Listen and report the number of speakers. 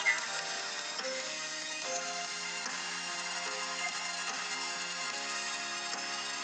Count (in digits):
0